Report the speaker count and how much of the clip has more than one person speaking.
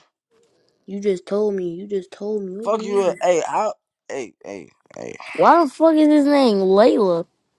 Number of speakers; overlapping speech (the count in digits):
3, about 7%